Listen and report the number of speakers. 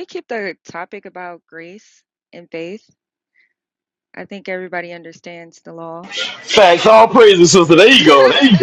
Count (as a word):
two